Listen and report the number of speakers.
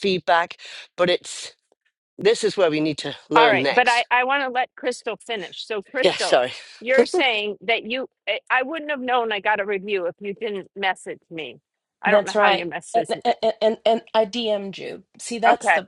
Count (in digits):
3